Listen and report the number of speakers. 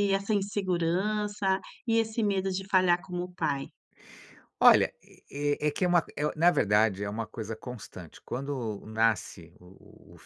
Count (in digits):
2